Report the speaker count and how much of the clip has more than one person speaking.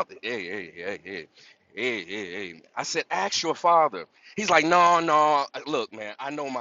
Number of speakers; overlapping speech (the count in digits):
1, no overlap